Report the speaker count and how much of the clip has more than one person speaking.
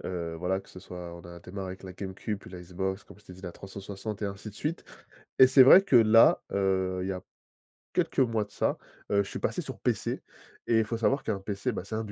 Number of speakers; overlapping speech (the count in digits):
1, no overlap